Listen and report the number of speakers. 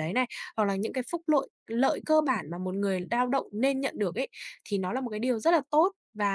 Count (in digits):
1